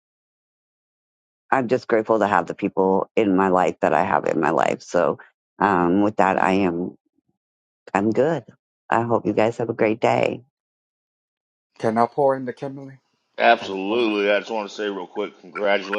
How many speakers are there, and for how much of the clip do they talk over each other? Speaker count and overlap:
3, about 3%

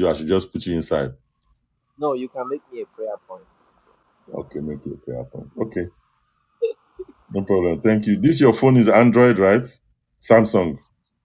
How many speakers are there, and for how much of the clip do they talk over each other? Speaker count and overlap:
2, no overlap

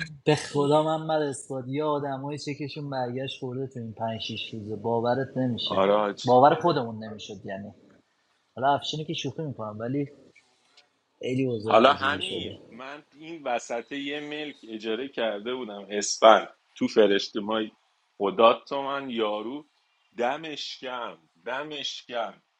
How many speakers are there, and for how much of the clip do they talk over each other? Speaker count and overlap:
2, about 6%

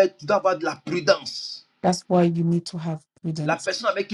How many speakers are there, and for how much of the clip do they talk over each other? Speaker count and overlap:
2, about 6%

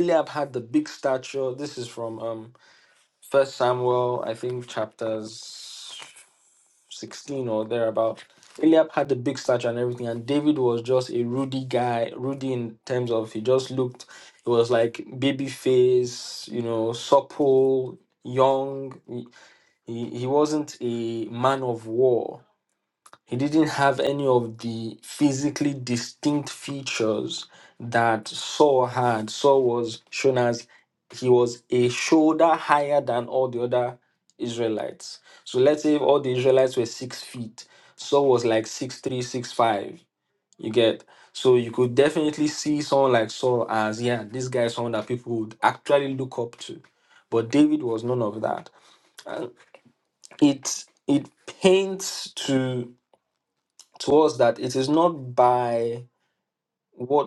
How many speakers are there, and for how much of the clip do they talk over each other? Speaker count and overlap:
1, no overlap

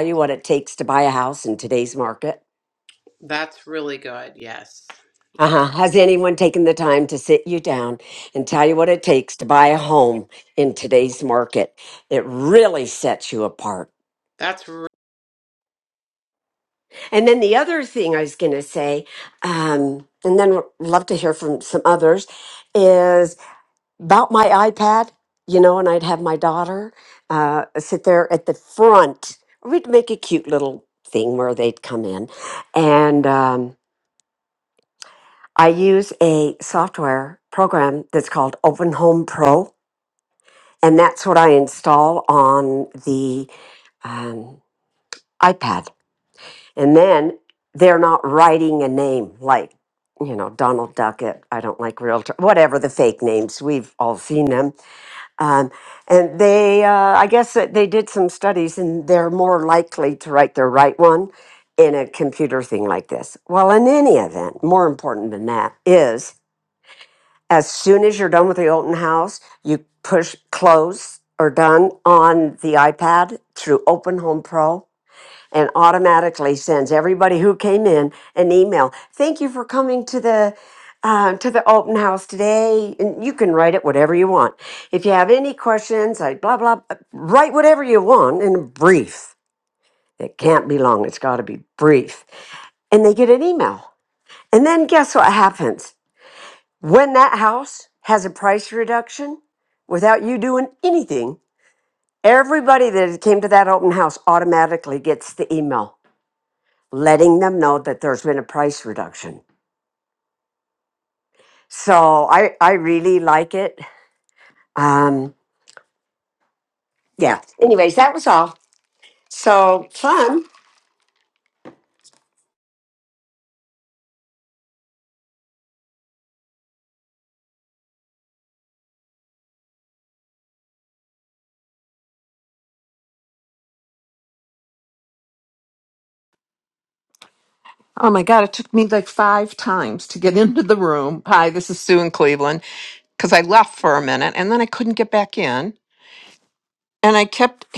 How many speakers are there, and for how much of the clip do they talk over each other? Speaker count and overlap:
3, under 1%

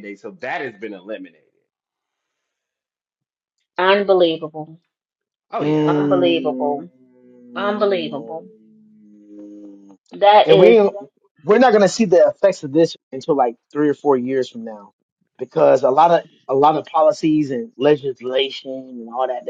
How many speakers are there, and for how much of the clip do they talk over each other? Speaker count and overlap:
3, about 7%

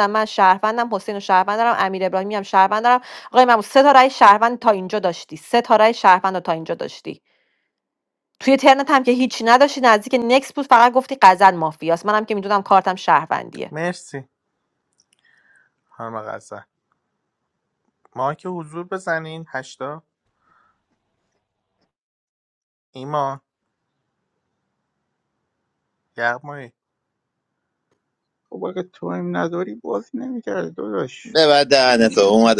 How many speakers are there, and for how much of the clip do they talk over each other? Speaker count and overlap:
4, about 2%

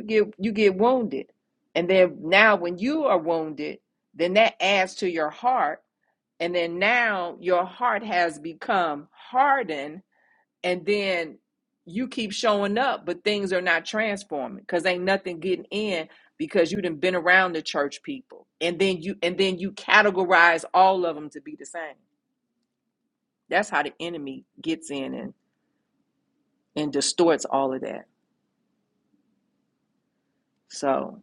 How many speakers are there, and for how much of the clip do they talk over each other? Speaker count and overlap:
1, no overlap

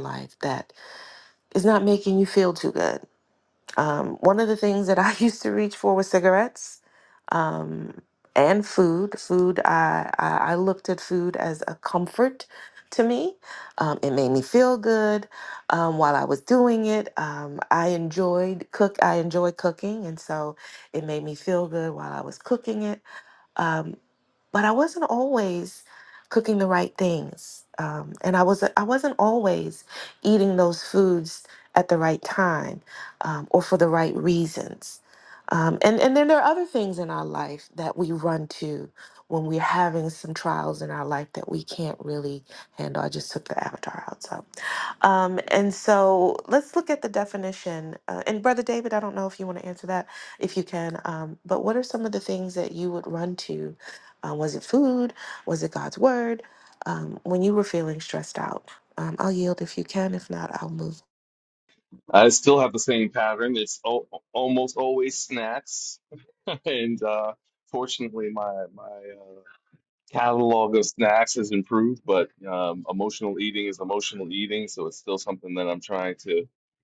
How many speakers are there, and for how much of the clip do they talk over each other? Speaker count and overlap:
2, no overlap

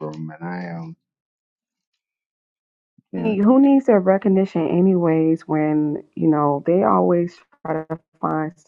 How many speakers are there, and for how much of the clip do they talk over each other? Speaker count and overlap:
2, about 2%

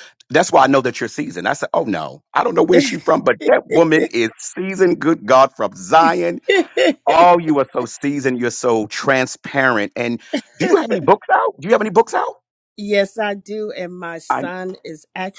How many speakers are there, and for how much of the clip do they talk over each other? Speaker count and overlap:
2, about 1%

